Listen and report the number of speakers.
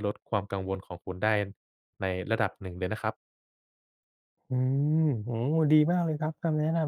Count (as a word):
two